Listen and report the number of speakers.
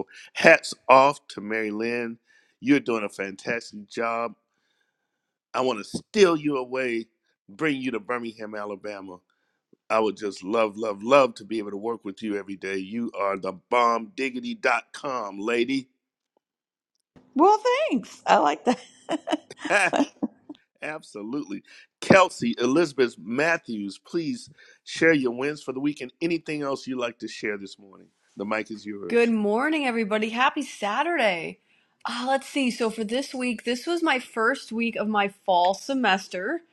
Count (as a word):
three